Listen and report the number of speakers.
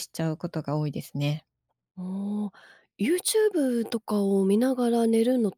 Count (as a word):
two